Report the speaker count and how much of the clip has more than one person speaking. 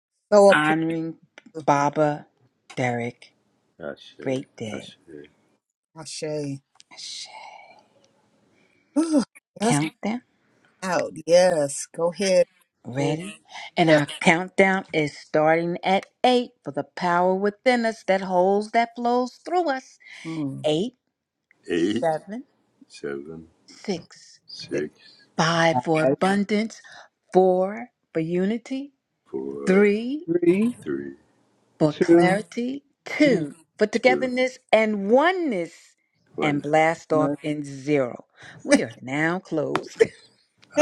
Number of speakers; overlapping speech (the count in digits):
4, about 6%